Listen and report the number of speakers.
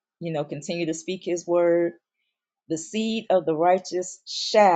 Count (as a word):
one